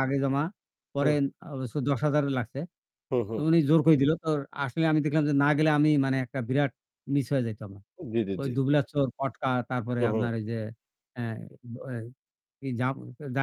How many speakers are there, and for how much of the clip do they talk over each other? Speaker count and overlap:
2, about 5%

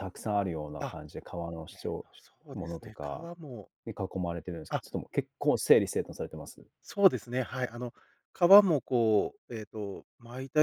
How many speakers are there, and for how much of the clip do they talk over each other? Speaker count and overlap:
2, about 9%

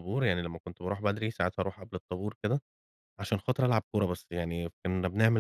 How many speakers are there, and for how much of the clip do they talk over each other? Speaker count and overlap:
1, no overlap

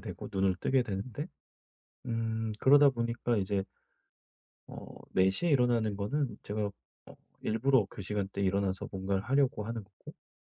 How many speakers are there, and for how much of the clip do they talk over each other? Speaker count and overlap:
1, no overlap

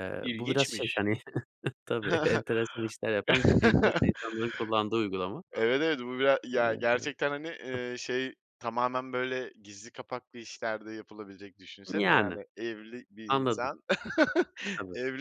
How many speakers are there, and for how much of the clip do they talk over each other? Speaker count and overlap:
2, about 15%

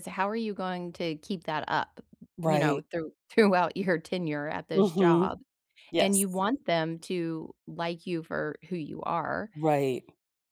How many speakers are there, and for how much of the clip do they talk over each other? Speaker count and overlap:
2, about 11%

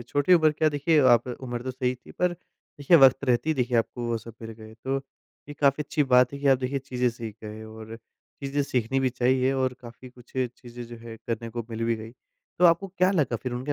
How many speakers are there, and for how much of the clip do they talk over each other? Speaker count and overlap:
1, no overlap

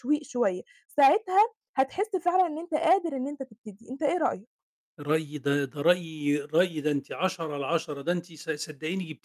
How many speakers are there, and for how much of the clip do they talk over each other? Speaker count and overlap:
2, no overlap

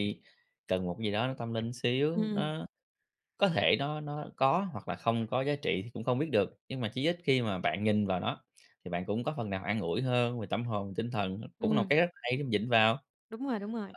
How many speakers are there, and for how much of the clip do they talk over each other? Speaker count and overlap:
2, about 4%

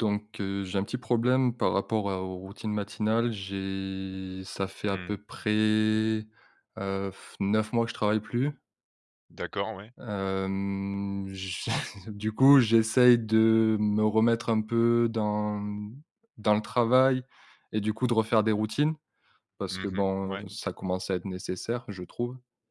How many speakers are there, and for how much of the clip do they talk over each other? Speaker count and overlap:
2, about 4%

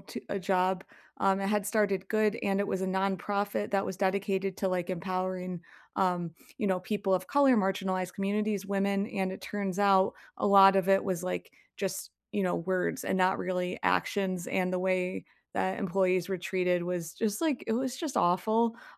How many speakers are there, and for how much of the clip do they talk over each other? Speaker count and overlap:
1, no overlap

